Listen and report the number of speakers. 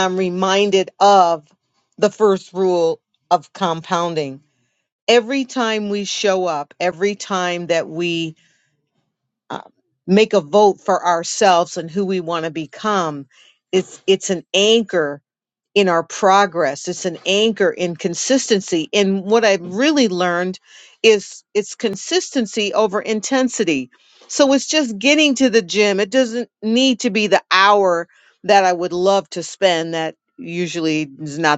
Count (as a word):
one